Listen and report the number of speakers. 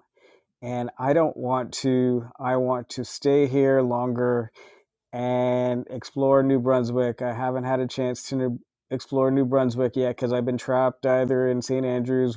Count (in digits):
1